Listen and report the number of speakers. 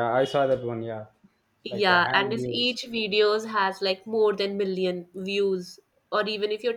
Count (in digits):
2